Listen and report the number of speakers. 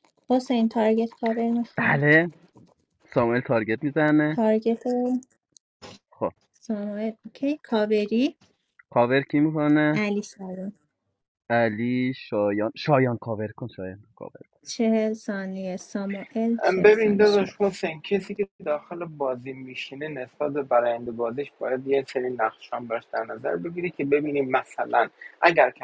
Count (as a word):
three